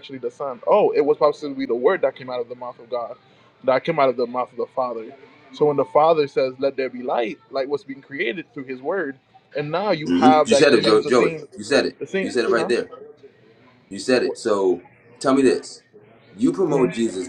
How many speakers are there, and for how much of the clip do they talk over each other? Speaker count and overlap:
2, about 15%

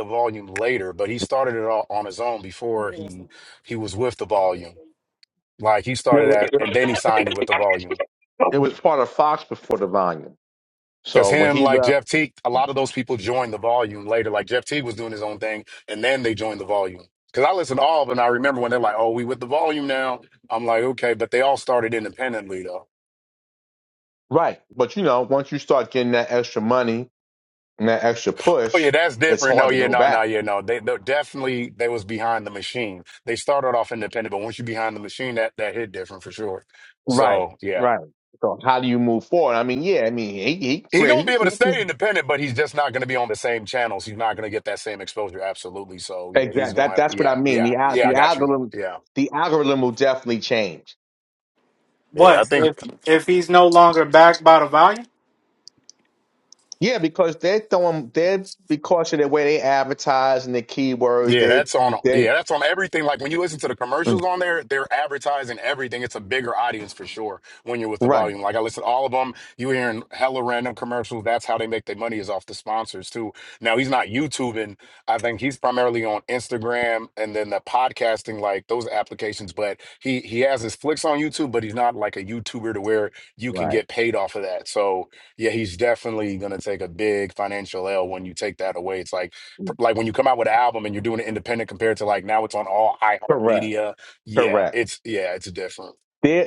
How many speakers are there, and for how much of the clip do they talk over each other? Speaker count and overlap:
3, about 9%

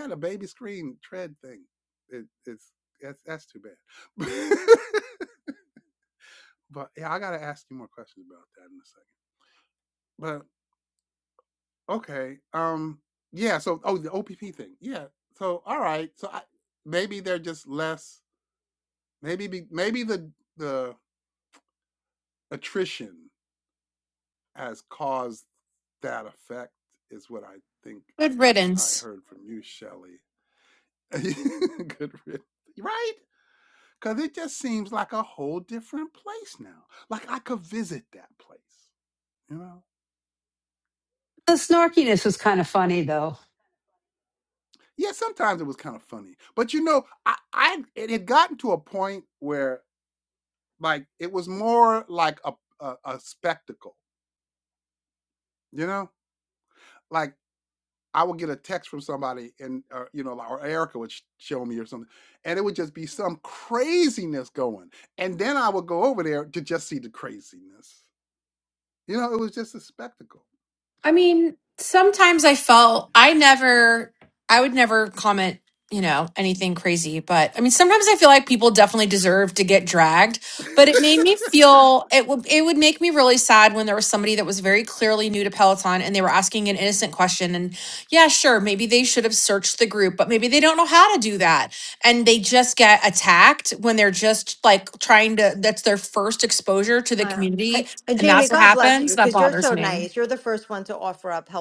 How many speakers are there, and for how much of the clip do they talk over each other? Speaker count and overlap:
4, about 3%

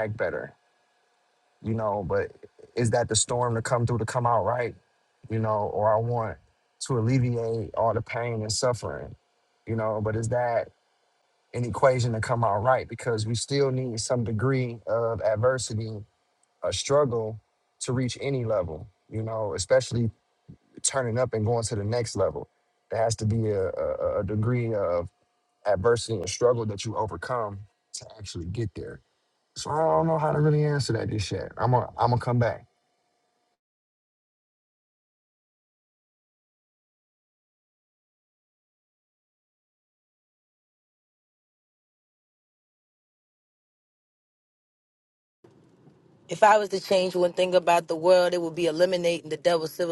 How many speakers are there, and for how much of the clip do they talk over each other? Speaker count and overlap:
2, no overlap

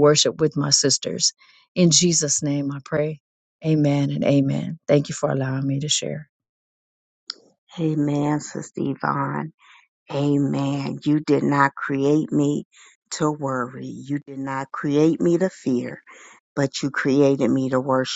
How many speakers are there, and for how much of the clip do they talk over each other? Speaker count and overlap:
2, no overlap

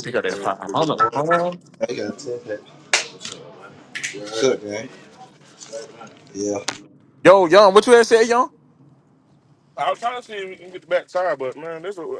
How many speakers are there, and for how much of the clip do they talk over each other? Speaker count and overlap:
3, no overlap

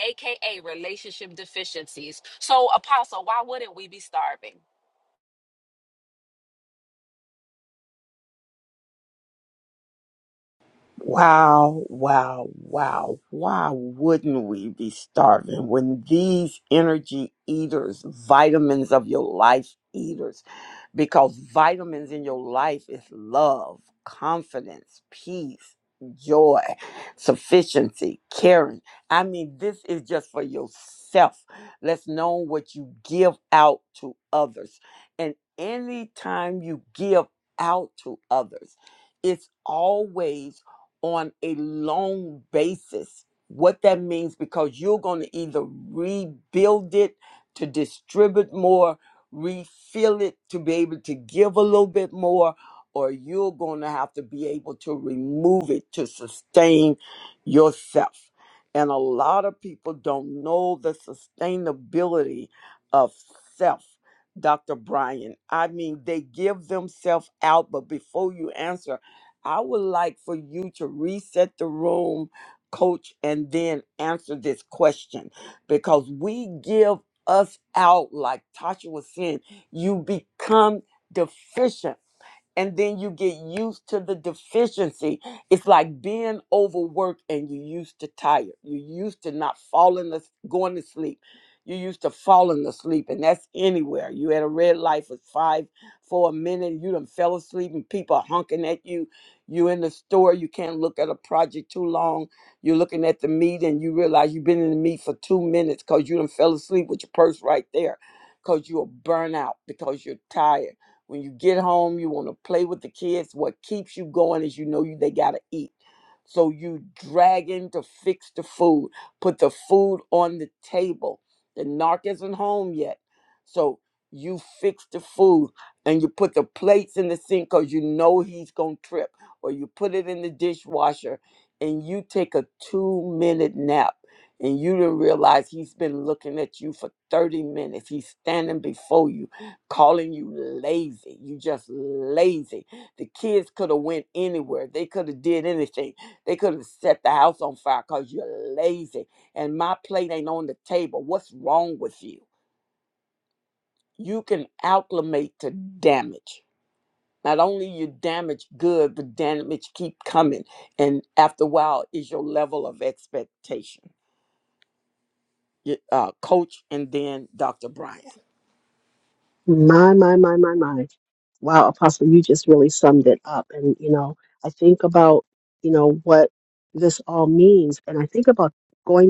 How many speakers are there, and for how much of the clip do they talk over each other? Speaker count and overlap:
3, no overlap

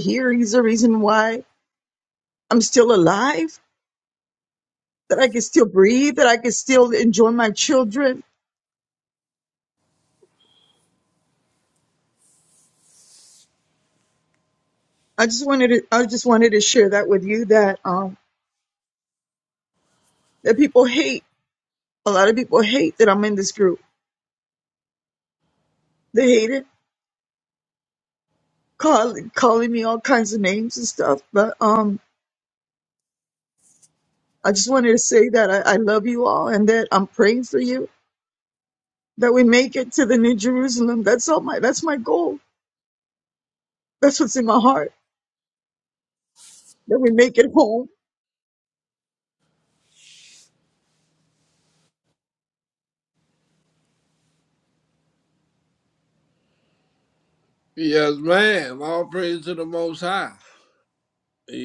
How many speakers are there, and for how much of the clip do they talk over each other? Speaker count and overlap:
2, no overlap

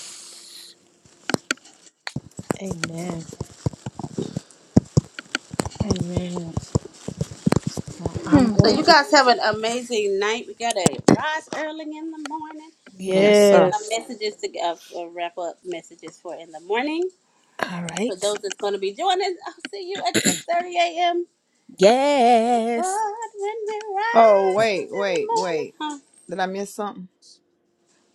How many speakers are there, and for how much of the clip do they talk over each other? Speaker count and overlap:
4, about 12%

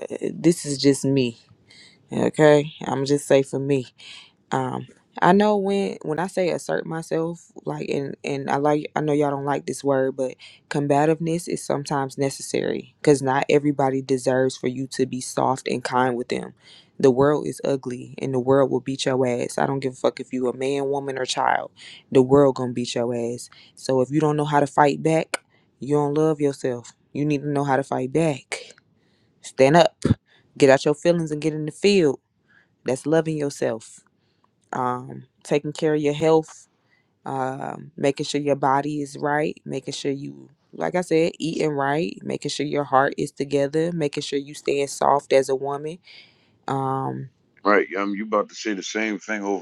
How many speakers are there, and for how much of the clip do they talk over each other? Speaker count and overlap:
2, no overlap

